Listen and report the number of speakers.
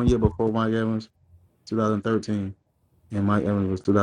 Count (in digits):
1